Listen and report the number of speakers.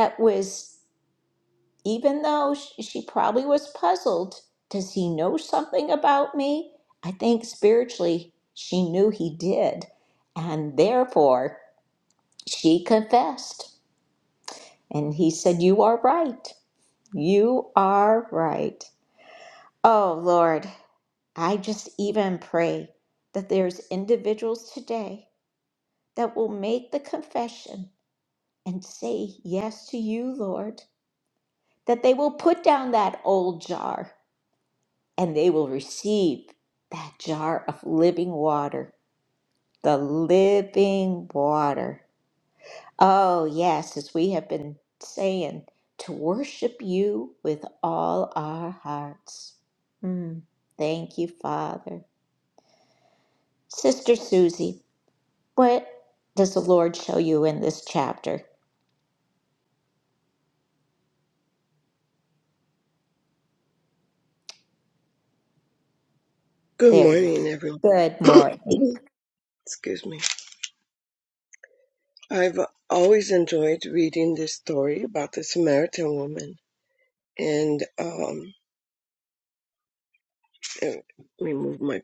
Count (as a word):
two